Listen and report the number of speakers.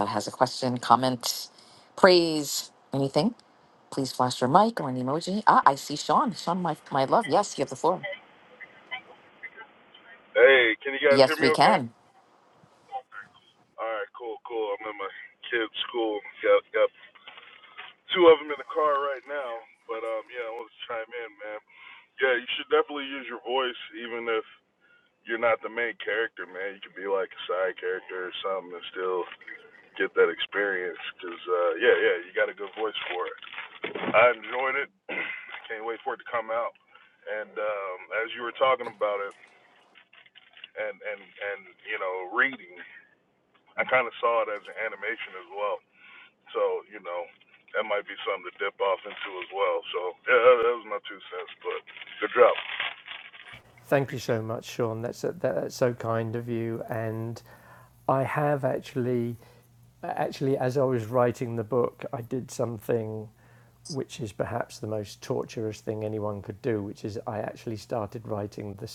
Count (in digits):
3